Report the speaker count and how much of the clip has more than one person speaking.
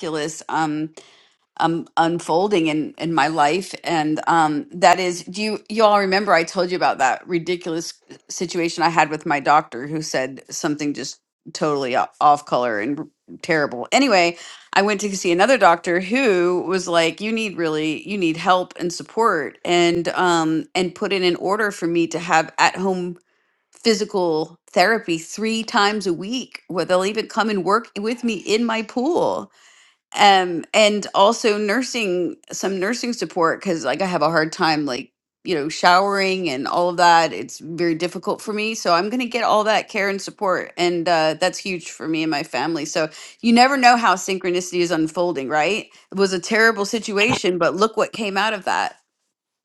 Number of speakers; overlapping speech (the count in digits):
1, no overlap